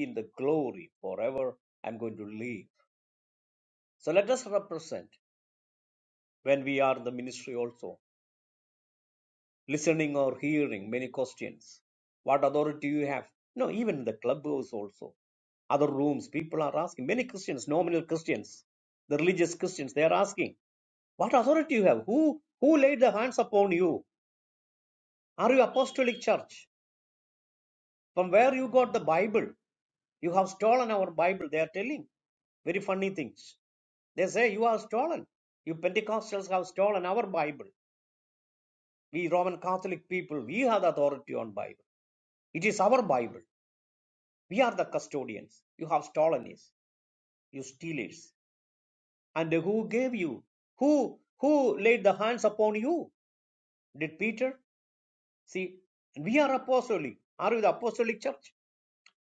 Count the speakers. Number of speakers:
one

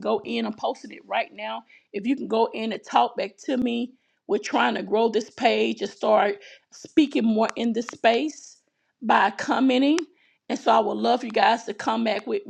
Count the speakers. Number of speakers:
one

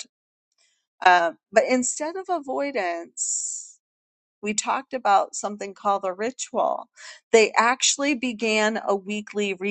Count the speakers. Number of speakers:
one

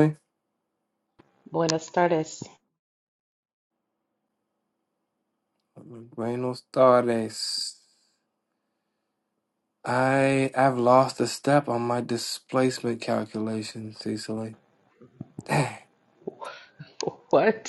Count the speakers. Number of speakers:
two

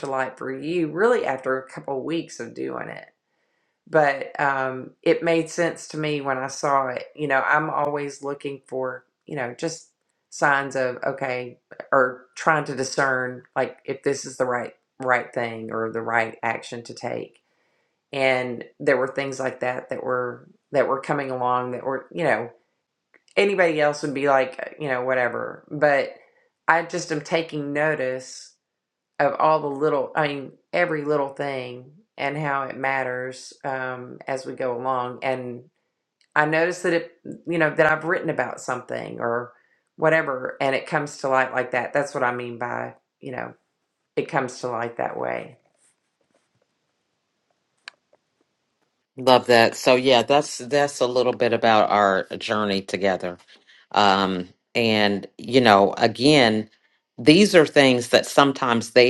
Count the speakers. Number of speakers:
two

